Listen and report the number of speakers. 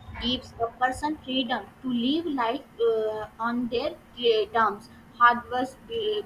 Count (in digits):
1